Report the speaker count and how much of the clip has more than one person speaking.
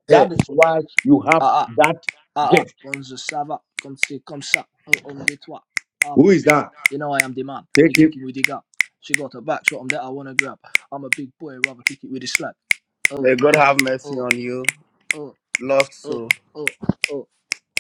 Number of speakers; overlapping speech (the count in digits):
3, about 11%